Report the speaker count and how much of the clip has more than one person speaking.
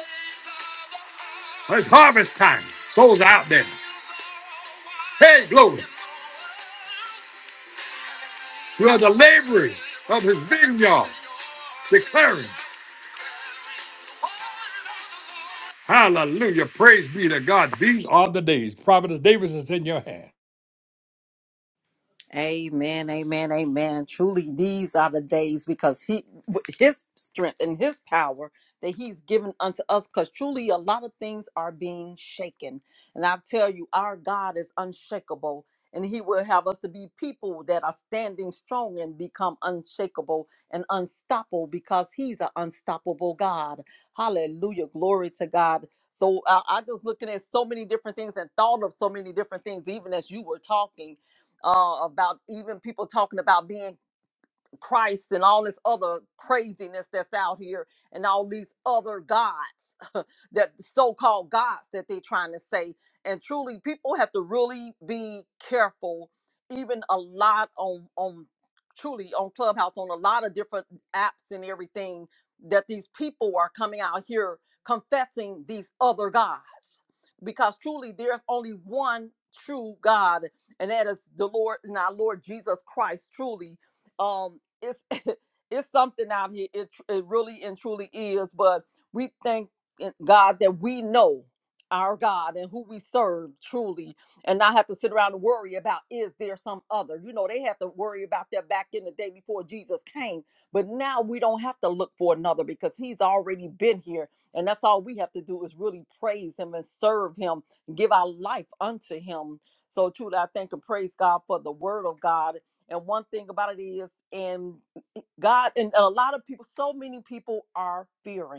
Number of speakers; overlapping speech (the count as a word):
two, no overlap